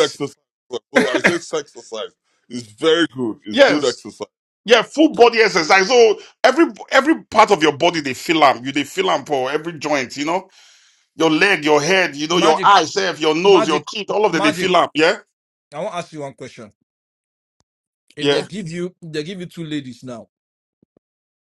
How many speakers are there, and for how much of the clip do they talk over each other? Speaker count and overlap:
3, about 8%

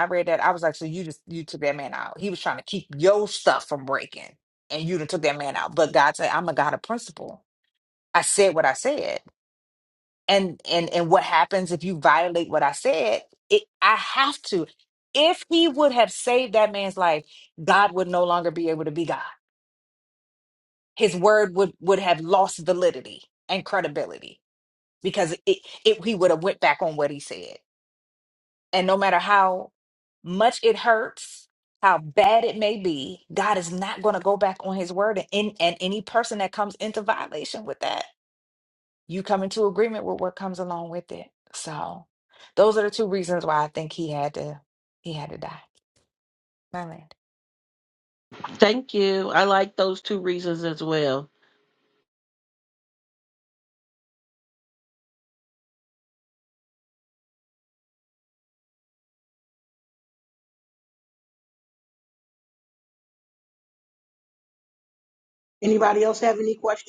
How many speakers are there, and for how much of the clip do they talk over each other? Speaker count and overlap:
3, no overlap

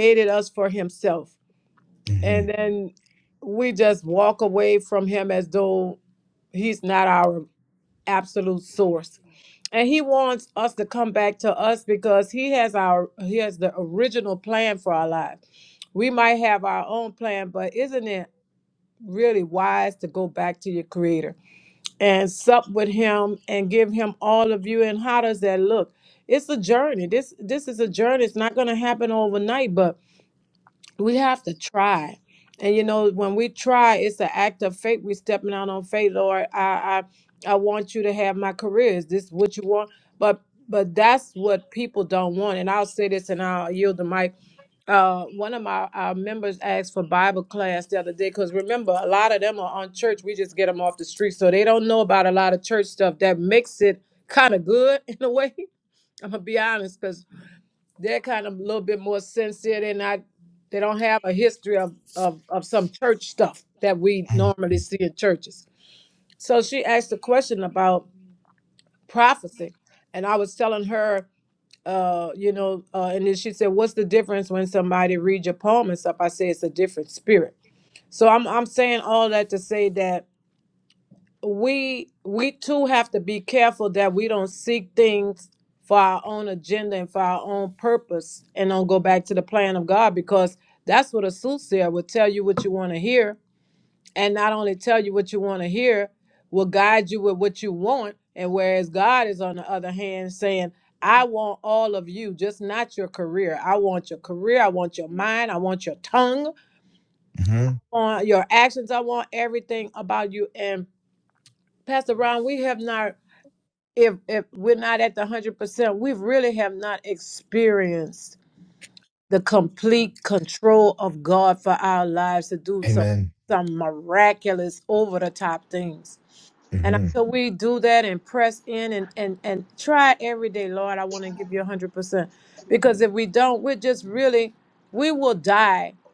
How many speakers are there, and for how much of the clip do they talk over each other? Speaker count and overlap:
2, about 1%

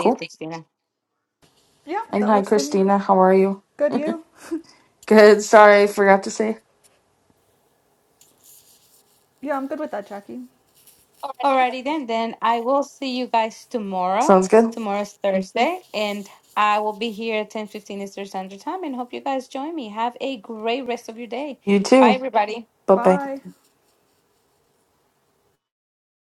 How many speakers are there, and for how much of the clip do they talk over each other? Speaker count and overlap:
3, about 5%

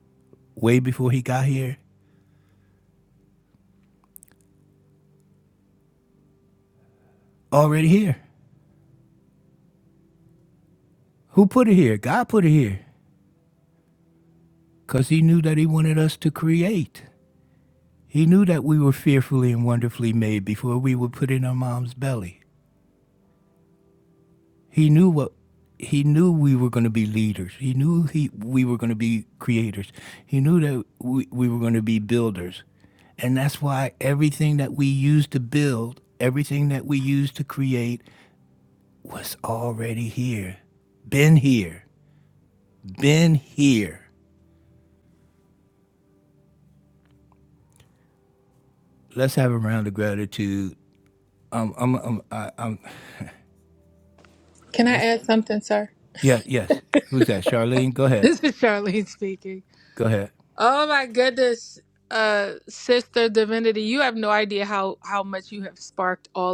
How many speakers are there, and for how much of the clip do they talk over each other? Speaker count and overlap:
2, under 1%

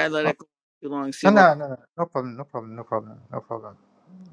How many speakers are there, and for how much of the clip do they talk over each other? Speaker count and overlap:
2, about 7%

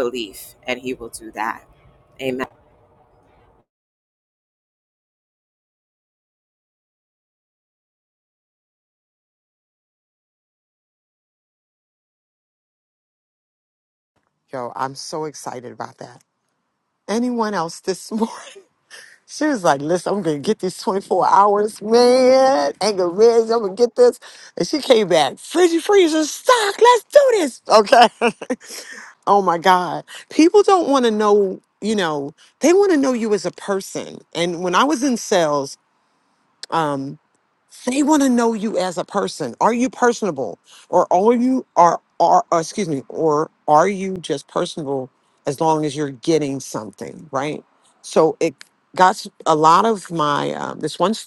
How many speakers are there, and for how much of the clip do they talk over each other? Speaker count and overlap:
2, no overlap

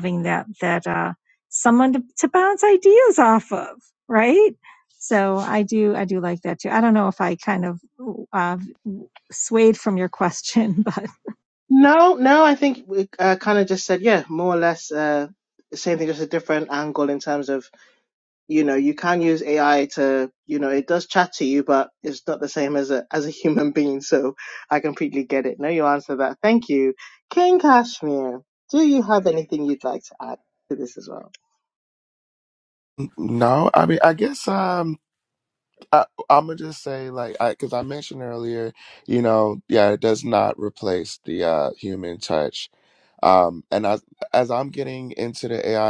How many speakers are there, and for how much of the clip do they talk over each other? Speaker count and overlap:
3, no overlap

